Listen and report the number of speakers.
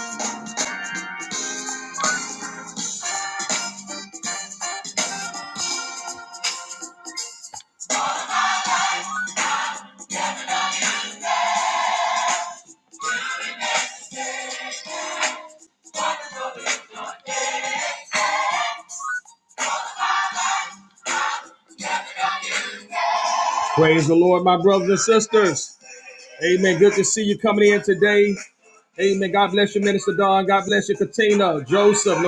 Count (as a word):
one